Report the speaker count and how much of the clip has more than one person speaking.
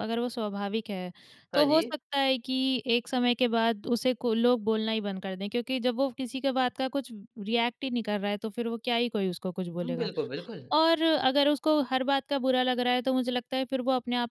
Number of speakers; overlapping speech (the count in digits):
2, about 4%